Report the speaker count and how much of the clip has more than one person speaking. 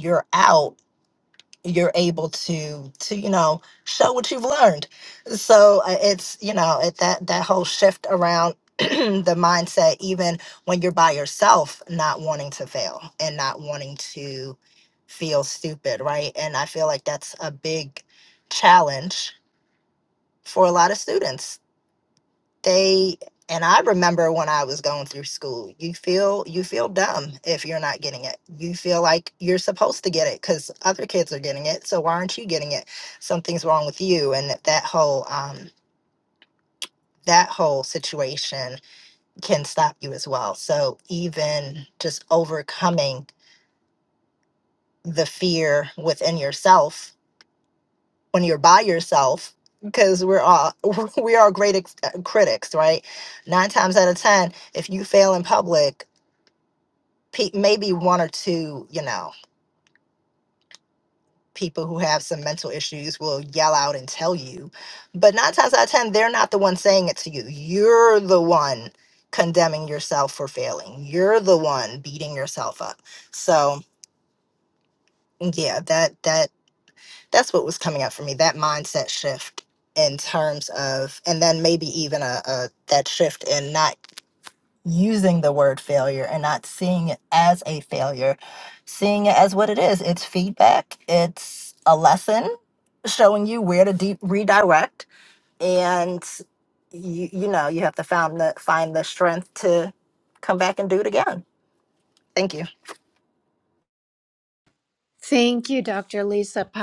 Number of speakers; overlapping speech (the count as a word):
two, no overlap